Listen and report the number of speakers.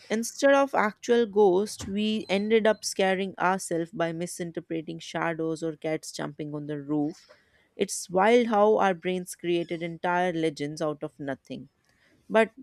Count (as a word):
one